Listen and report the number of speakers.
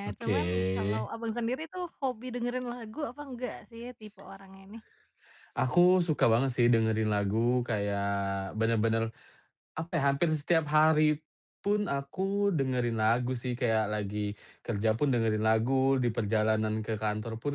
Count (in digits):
2